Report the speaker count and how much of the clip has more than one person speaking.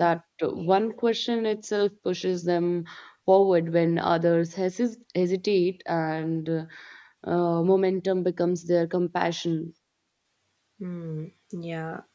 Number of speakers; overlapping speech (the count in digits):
2, about 1%